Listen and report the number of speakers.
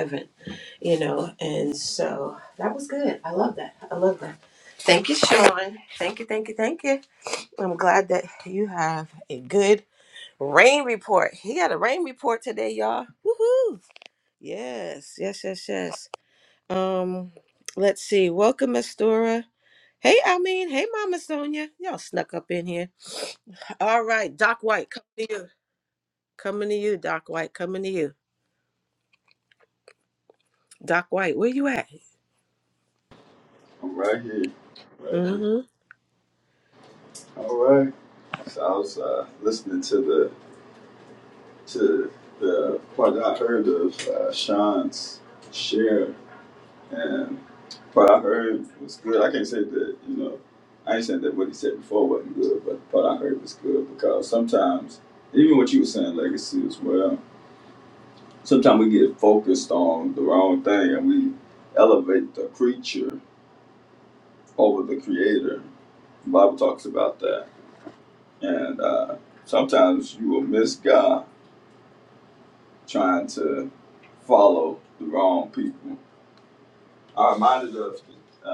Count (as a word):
two